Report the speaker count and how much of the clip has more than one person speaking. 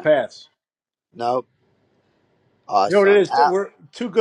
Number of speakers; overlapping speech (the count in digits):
2, about 17%